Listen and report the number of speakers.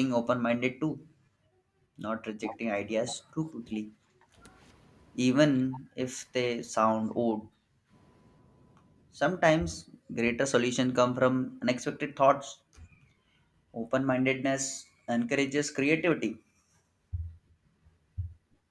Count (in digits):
1